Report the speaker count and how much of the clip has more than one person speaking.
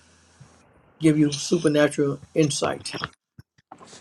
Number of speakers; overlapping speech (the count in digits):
1, no overlap